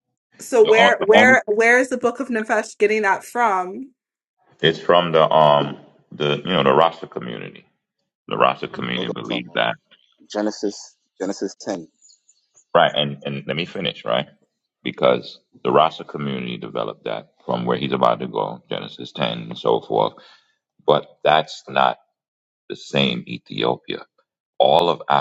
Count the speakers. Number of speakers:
3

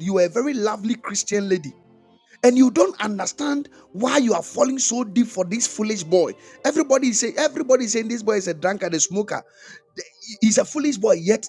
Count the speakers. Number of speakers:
1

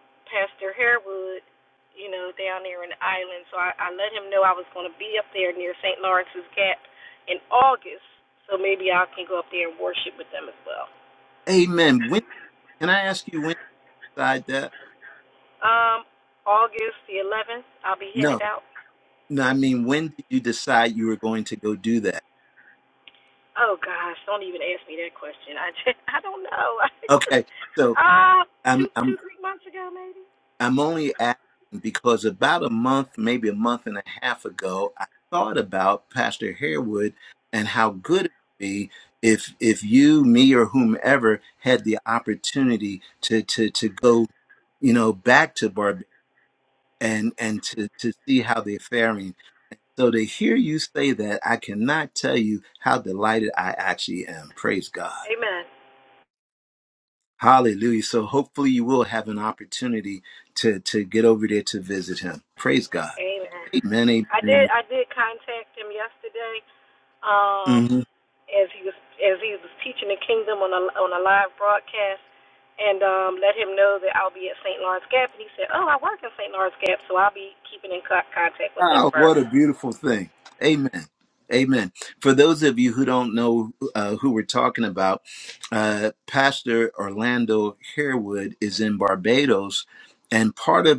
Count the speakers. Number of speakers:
2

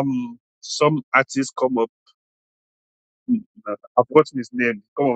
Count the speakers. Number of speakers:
1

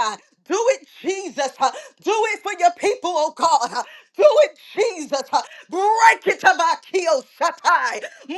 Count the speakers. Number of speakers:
1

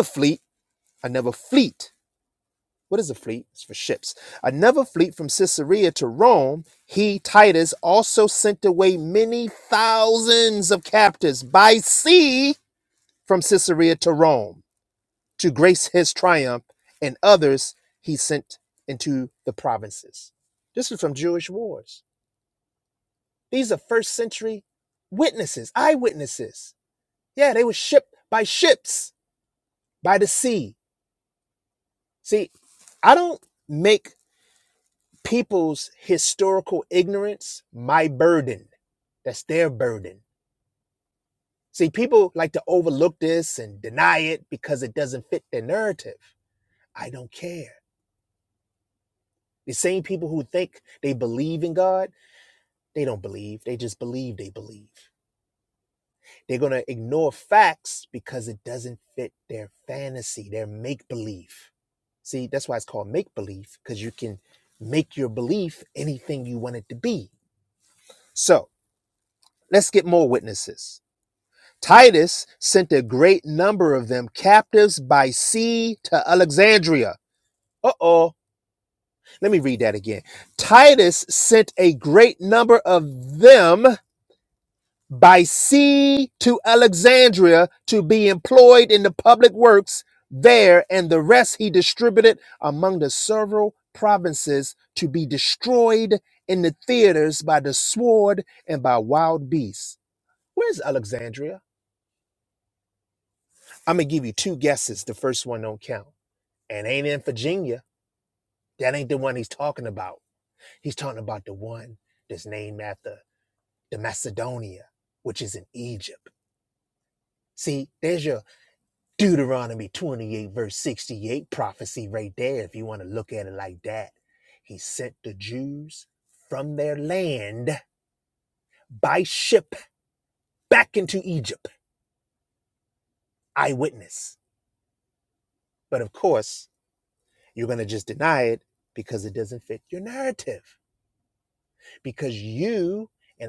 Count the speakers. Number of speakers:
1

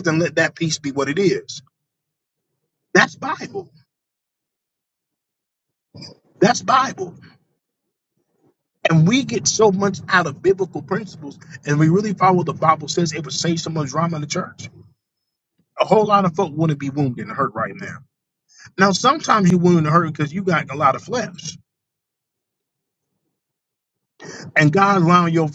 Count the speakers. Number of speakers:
1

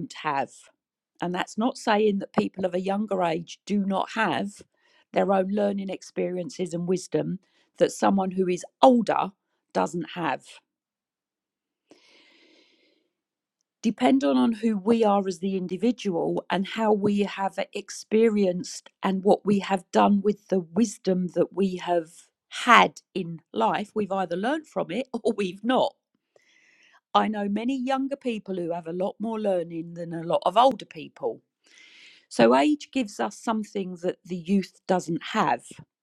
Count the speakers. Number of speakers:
1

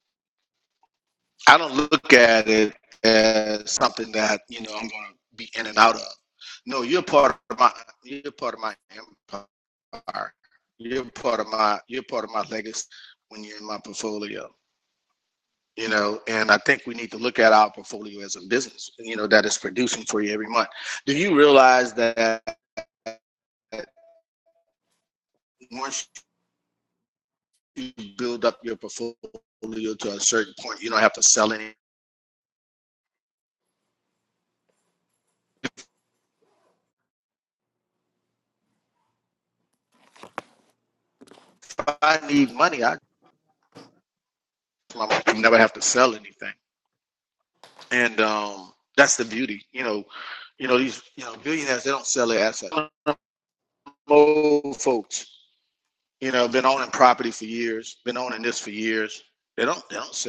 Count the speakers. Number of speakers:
1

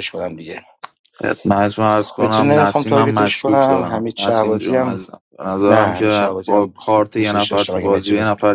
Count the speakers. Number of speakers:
2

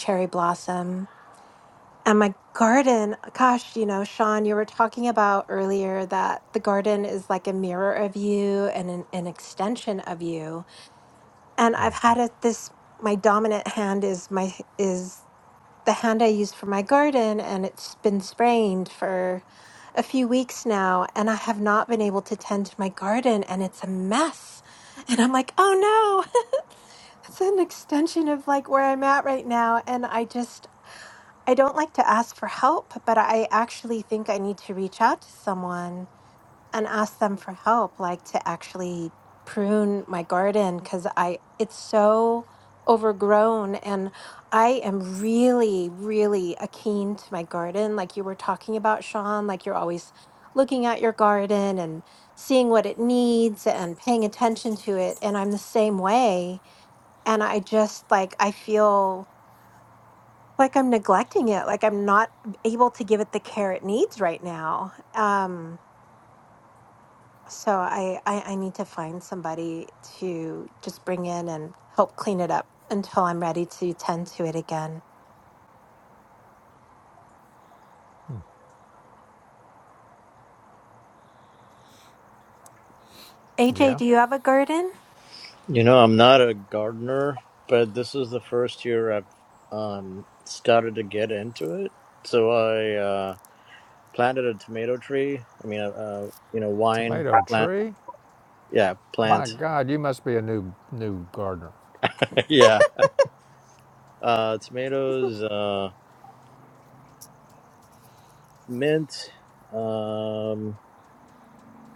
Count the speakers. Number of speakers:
3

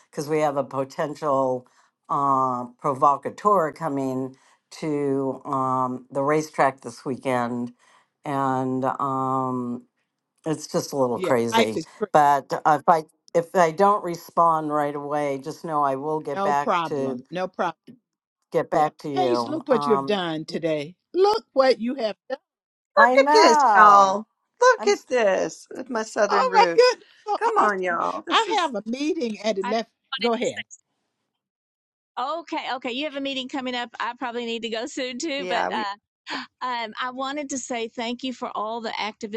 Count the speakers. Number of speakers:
4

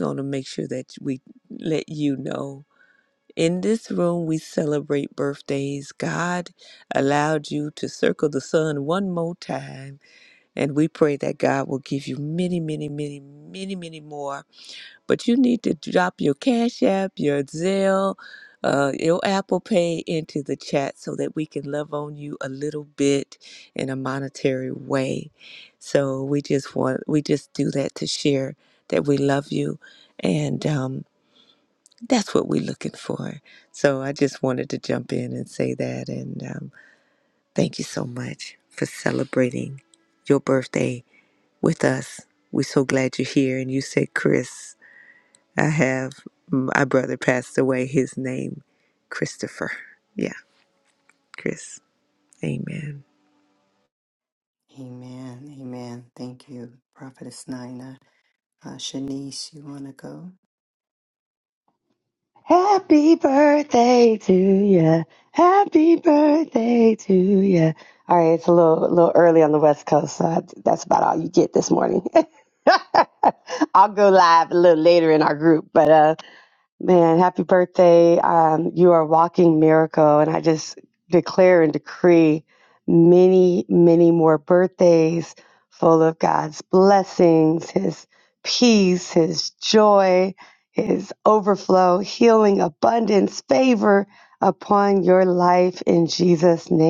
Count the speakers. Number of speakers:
3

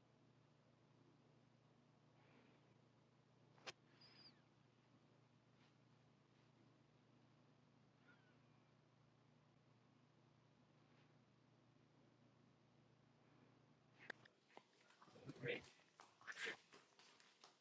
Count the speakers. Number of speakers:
0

